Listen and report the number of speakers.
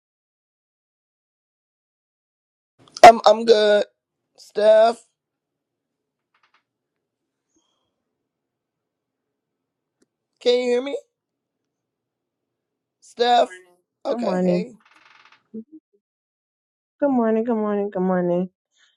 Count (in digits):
2